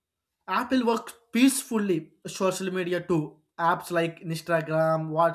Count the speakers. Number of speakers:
1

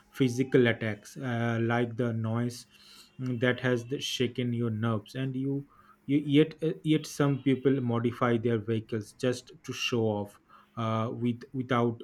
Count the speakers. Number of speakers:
1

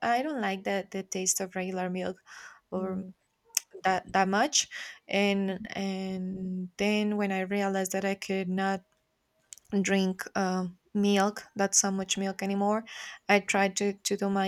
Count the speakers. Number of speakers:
1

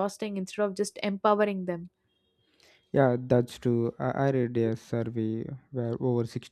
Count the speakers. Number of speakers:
2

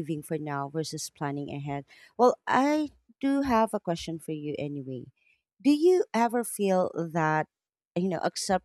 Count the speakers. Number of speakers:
1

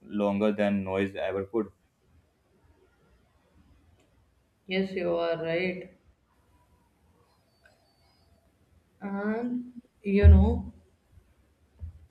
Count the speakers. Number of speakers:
2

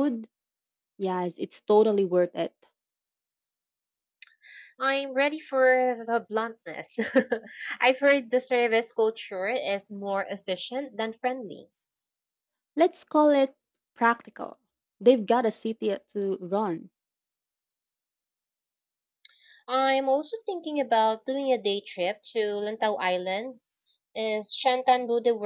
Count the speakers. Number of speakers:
2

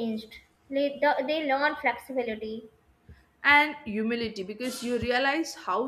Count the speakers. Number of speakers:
2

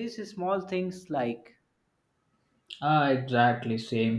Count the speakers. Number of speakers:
2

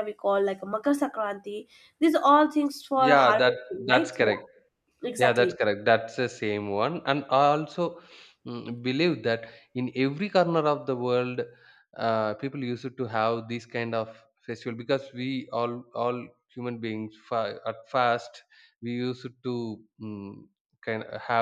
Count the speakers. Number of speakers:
2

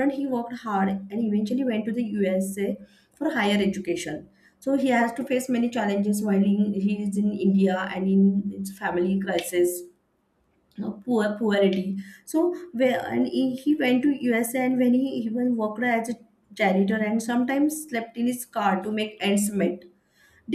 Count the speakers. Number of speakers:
1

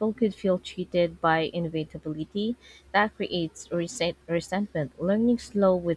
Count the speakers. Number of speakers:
1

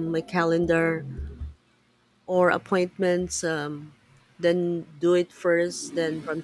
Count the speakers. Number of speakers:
1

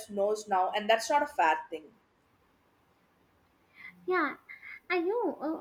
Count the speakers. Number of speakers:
2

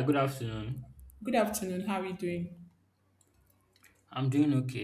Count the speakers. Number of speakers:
2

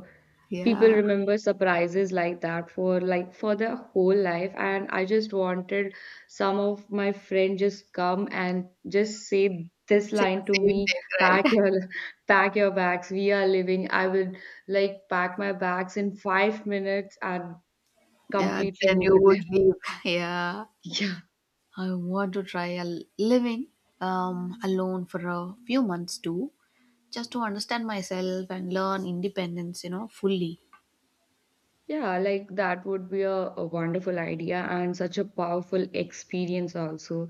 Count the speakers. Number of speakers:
2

